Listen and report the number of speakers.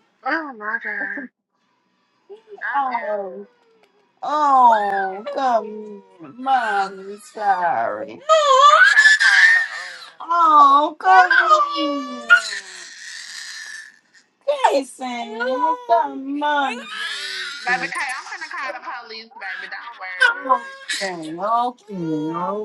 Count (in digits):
2